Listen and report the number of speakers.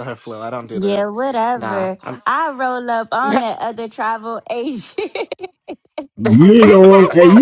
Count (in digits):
3